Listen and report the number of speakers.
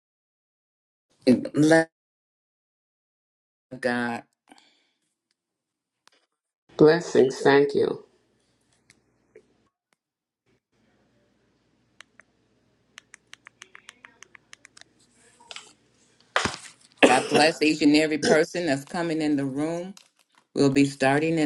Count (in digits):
2